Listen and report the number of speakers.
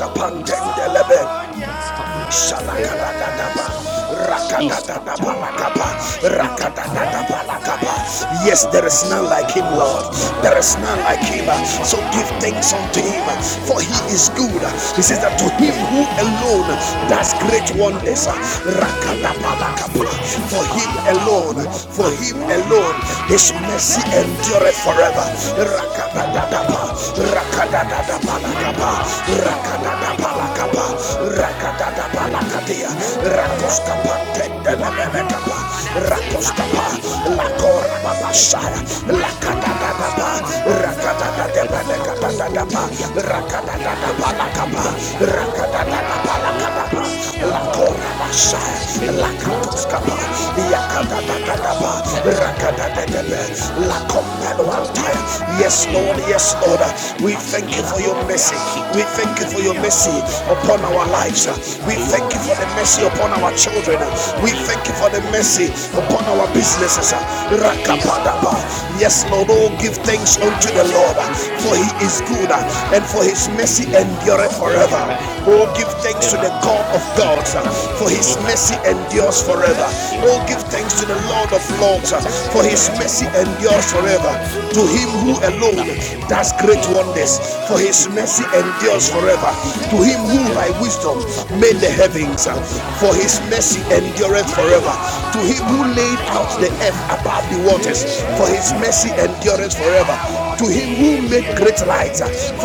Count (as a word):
two